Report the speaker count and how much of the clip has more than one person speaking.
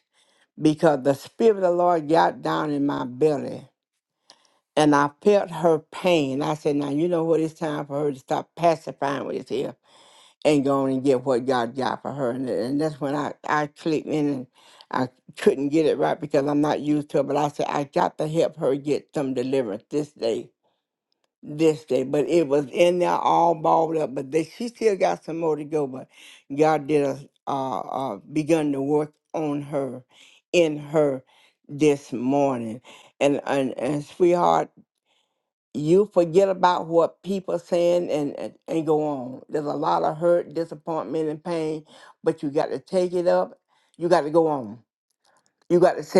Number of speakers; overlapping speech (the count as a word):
one, no overlap